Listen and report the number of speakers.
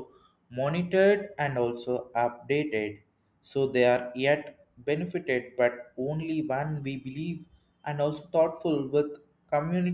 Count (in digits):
1